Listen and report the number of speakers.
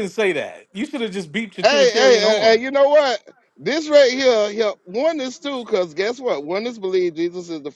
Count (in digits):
2